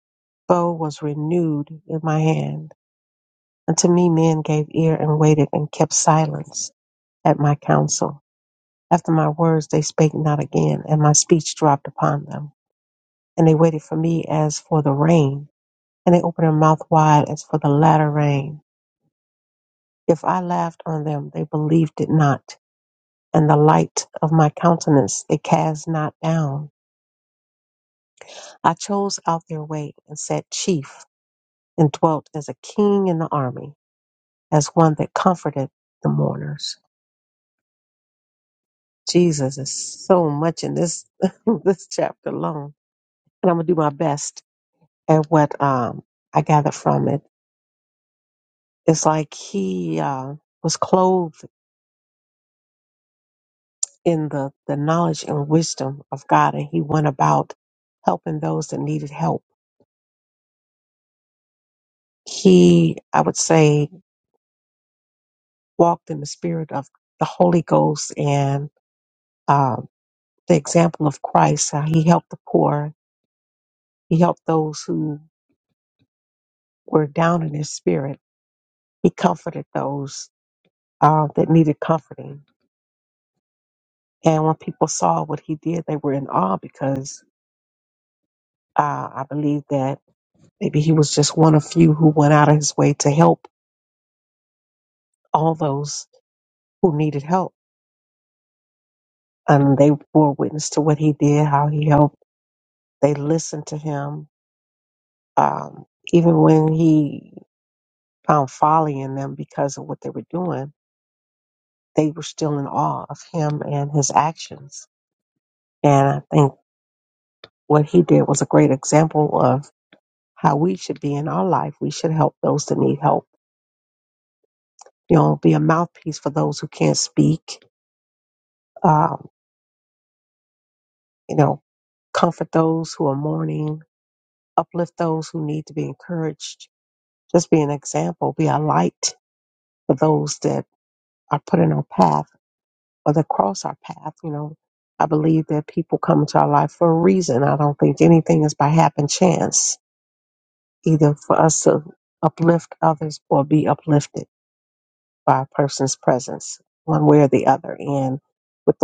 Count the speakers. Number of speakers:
one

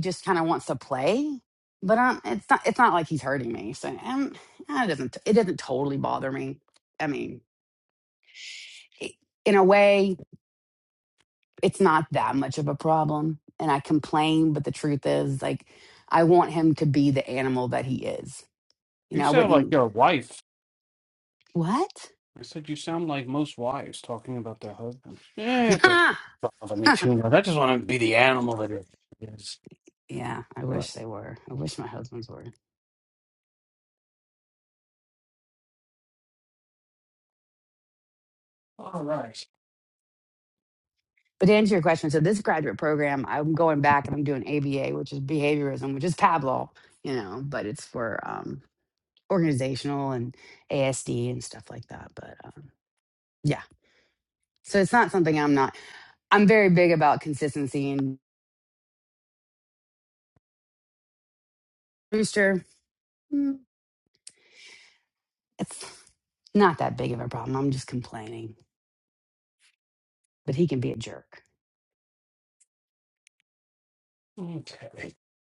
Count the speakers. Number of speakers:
two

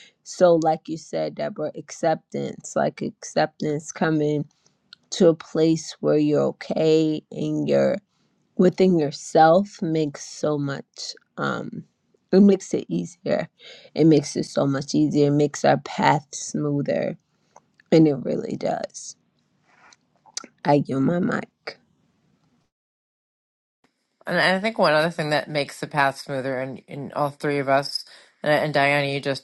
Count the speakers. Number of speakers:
two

